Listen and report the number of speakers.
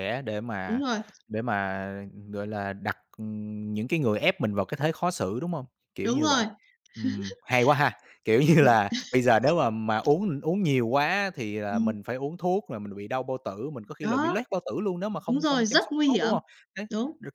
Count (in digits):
2